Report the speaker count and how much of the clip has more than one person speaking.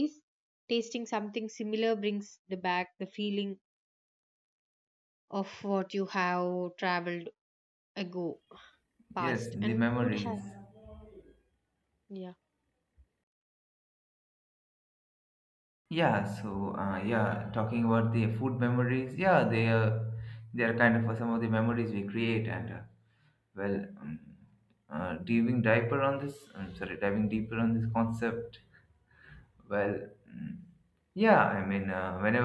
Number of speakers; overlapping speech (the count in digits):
2, about 4%